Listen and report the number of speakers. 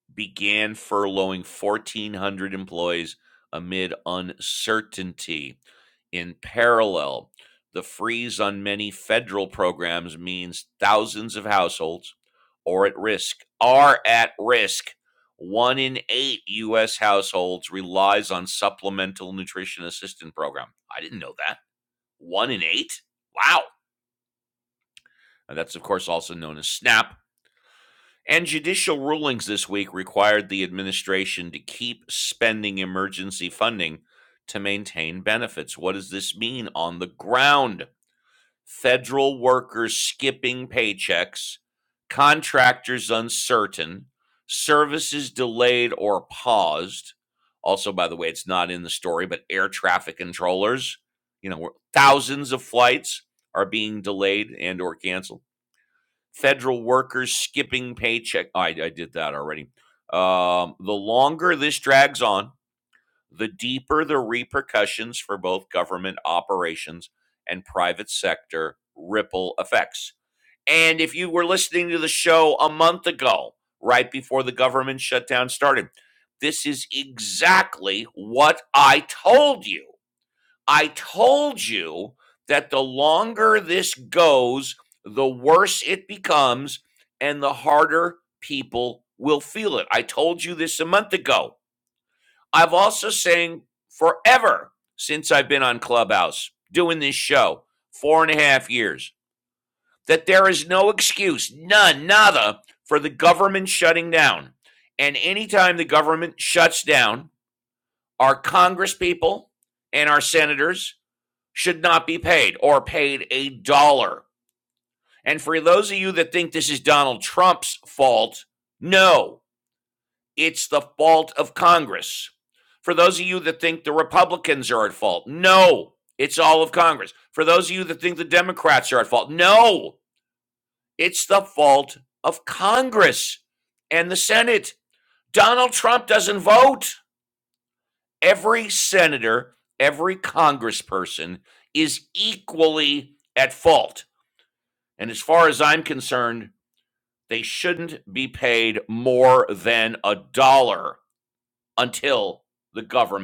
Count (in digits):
1